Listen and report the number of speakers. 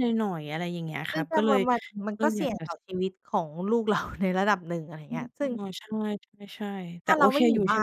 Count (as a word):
two